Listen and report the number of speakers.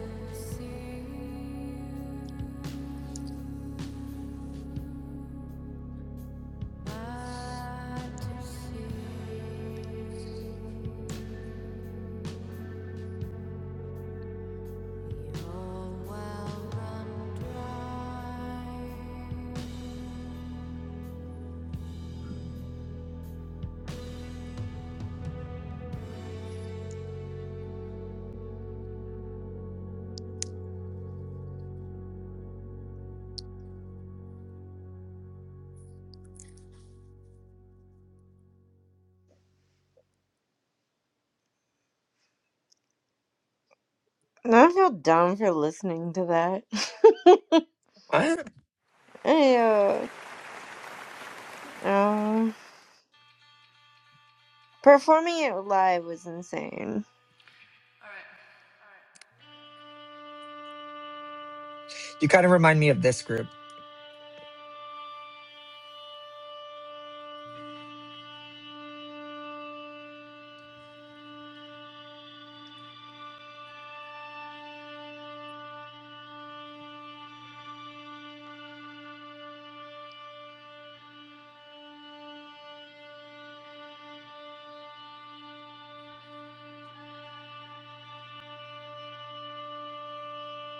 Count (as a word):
two